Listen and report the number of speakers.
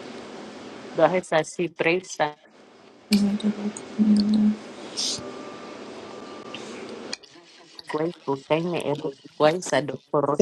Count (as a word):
two